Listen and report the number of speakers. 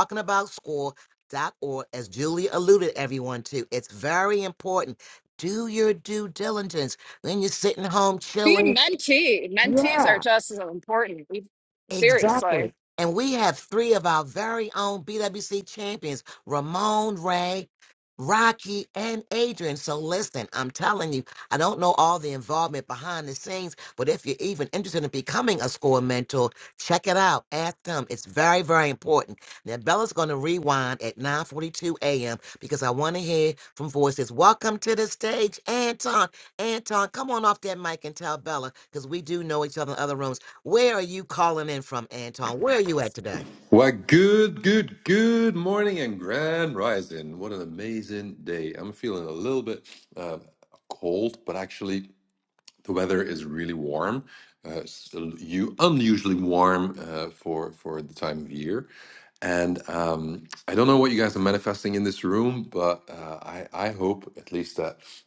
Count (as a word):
three